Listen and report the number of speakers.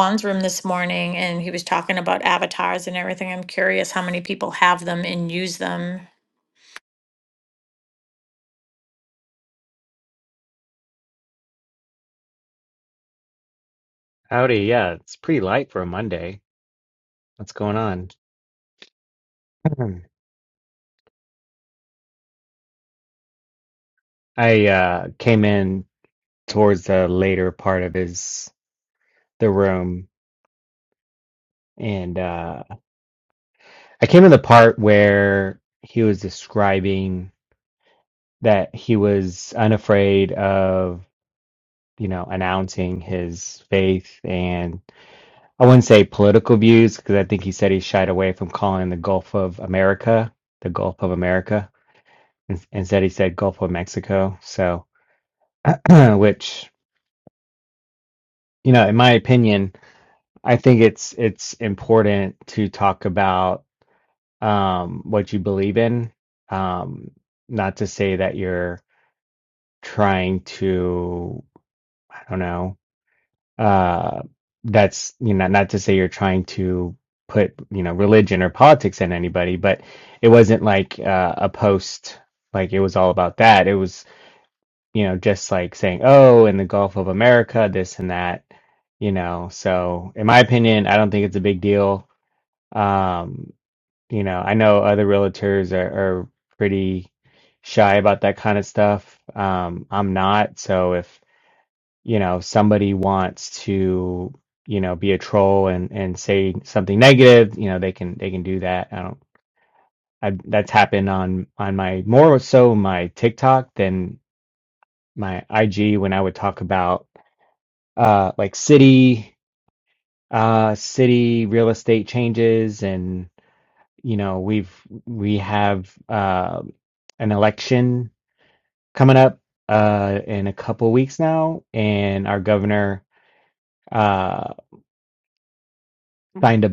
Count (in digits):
2